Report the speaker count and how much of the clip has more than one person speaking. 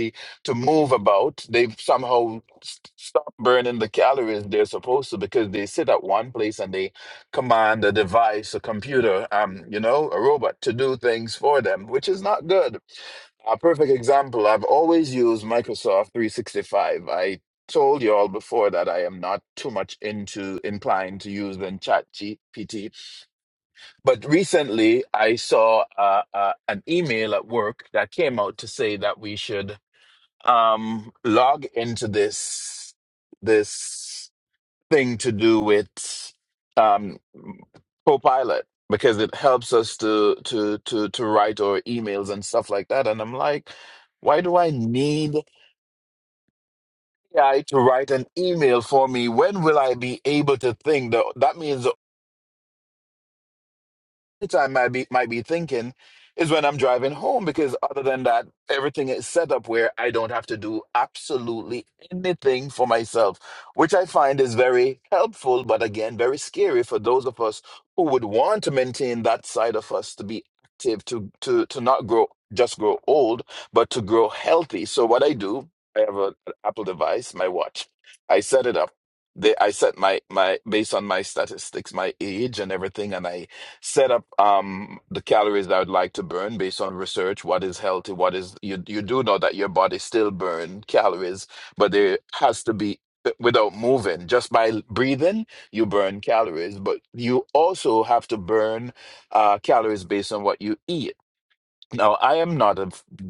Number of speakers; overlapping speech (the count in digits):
1, no overlap